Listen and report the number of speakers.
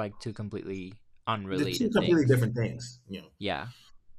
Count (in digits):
2